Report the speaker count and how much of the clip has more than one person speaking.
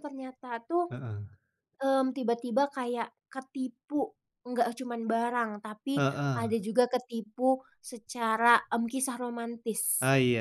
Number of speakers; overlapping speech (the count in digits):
2, about 5%